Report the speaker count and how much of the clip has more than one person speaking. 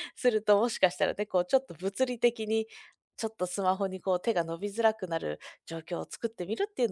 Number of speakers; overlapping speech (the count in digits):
1, no overlap